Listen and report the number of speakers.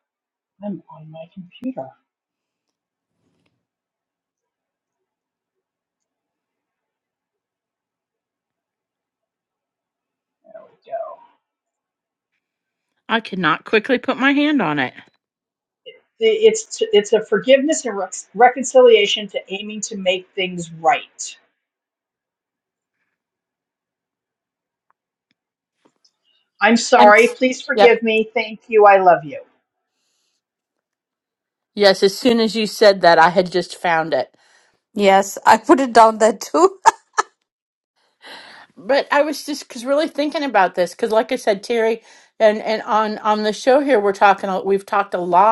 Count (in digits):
3